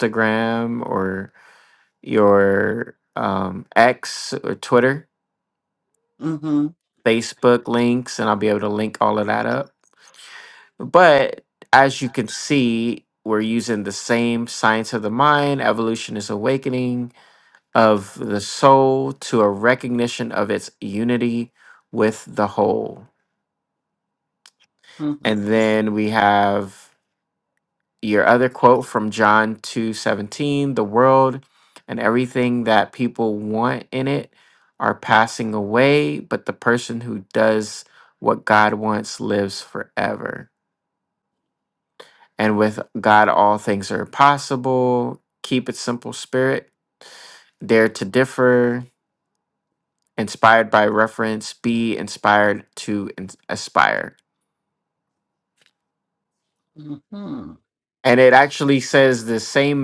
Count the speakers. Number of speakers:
2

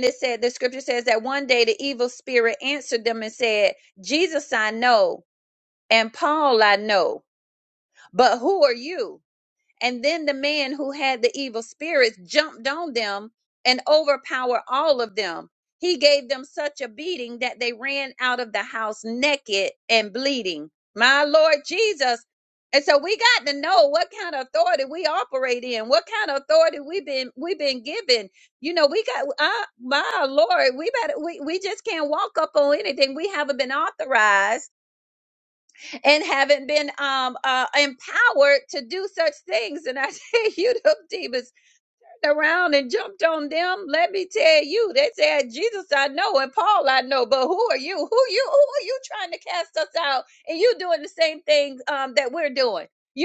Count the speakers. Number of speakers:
1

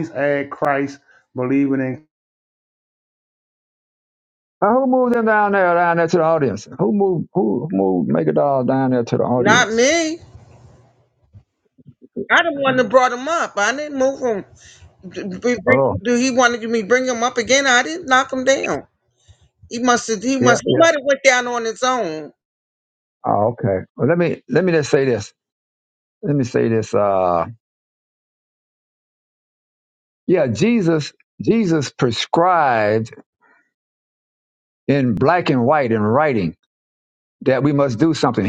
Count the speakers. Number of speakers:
3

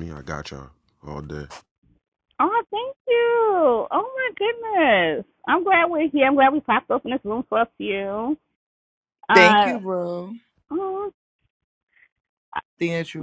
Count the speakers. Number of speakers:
3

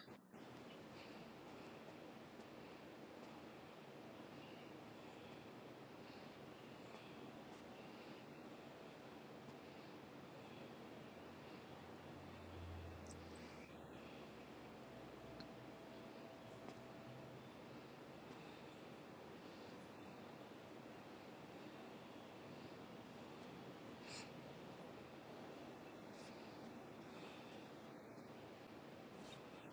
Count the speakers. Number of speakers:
0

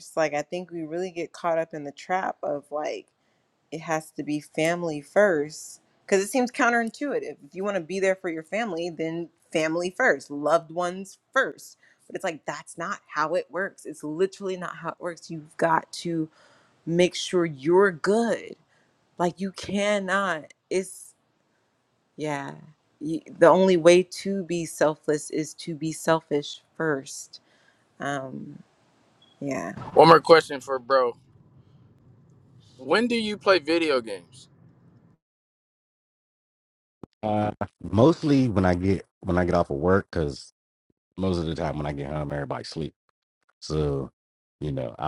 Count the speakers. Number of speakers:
3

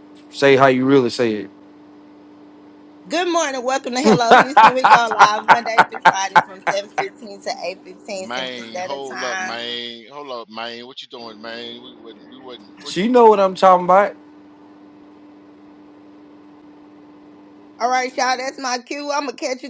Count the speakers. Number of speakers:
3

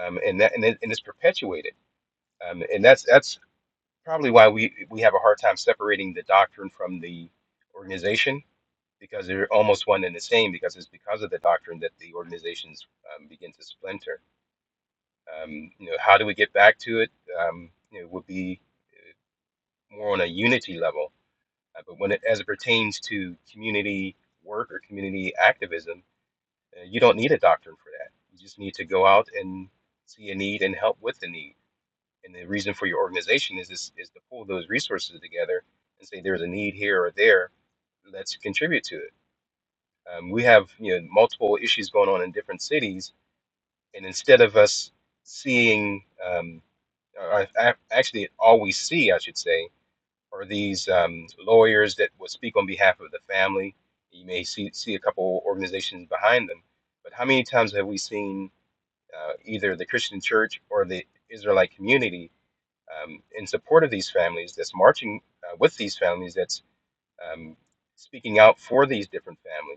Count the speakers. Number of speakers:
1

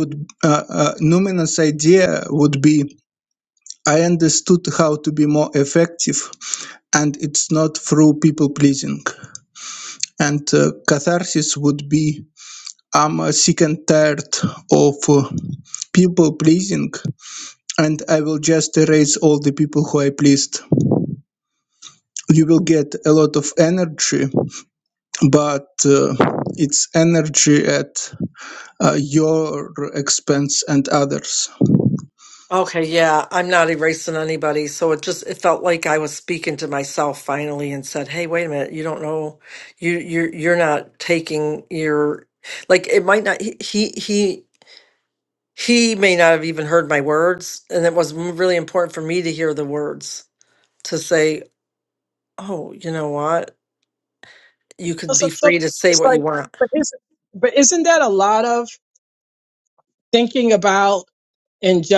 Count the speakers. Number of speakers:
3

